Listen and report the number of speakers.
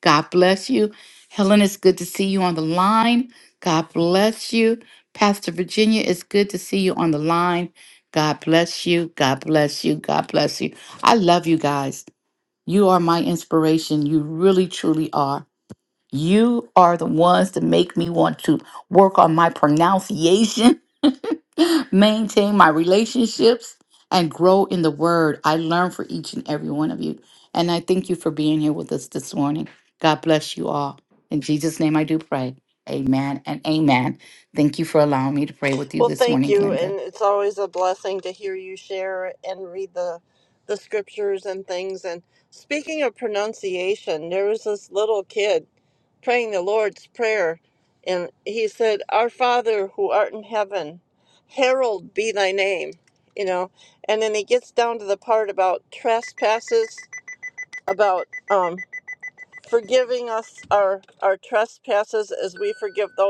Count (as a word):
two